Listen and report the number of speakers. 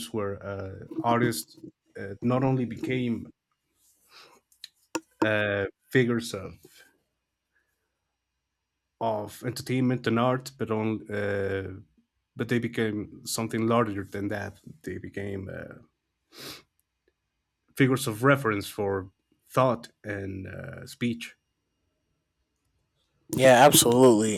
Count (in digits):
2